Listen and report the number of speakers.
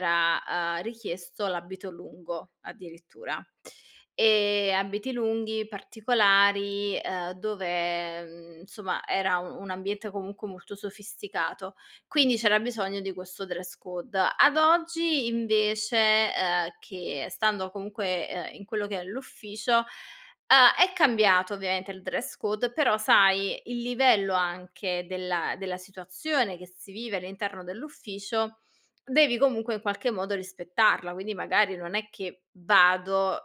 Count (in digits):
1